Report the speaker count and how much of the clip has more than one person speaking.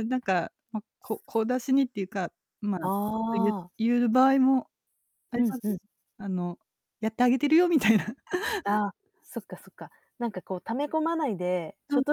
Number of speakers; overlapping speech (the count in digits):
2, about 6%